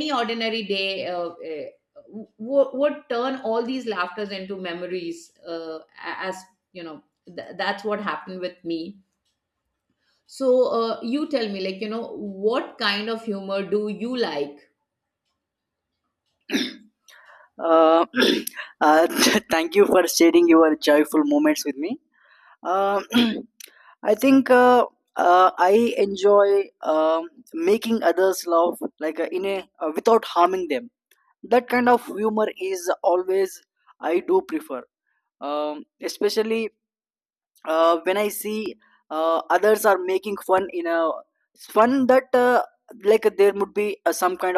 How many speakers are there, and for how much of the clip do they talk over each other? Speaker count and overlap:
two, no overlap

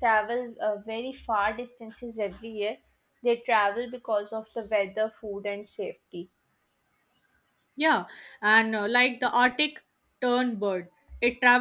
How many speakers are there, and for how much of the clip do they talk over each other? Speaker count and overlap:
two, no overlap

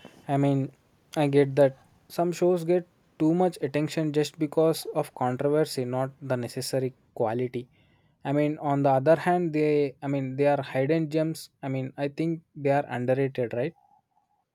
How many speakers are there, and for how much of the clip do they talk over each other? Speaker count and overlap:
one, no overlap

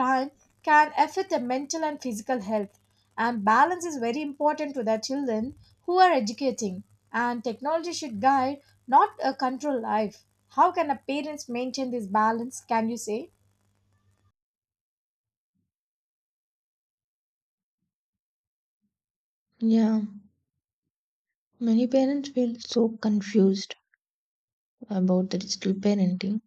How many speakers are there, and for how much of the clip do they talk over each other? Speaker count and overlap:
two, no overlap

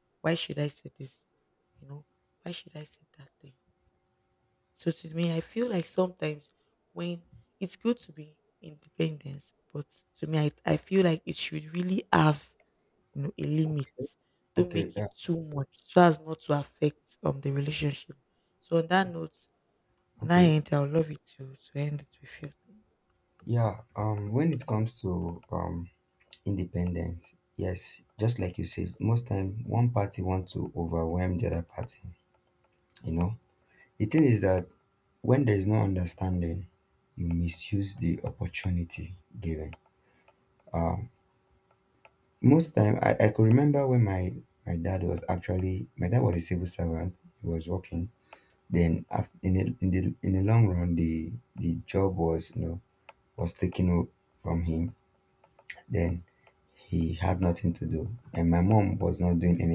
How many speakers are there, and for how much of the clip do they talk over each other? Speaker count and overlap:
two, about 1%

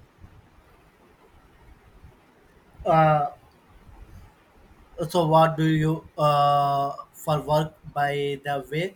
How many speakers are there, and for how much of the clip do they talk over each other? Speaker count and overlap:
one, no overlap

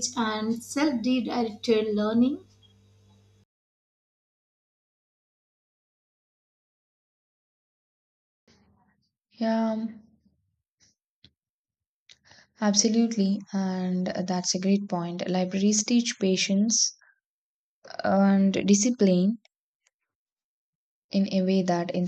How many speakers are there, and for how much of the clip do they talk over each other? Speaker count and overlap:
two, no overlap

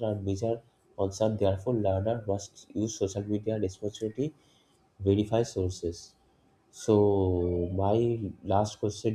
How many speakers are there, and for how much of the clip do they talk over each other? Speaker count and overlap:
one, no overlap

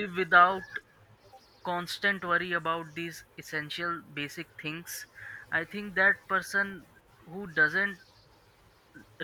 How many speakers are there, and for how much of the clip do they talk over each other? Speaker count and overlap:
one, no overlap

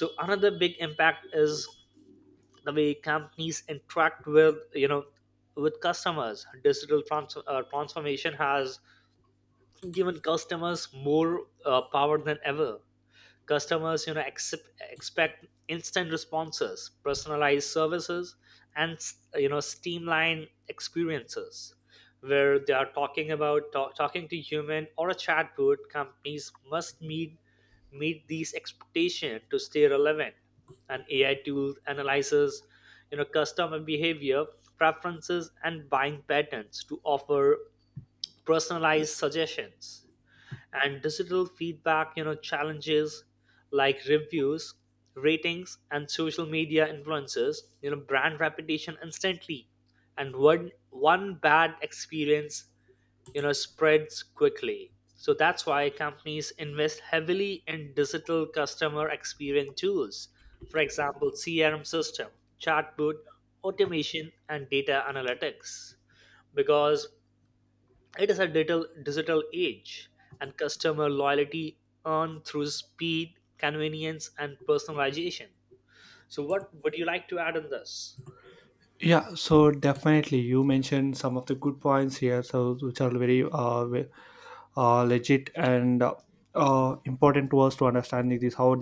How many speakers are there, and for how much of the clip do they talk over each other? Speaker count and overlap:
two, no overlap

